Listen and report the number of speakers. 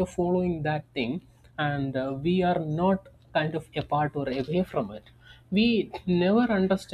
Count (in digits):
1